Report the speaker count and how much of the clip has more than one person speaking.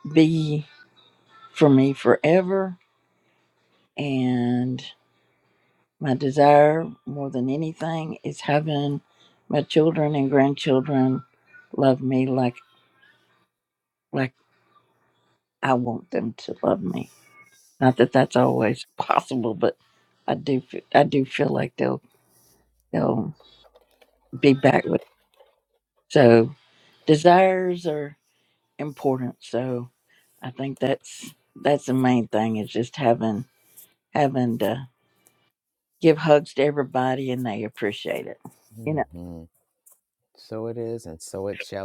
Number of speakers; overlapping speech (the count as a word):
two, under 1%